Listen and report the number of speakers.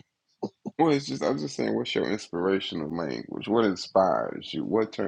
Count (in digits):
1